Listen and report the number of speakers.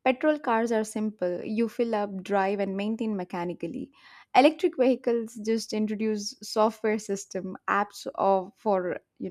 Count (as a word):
one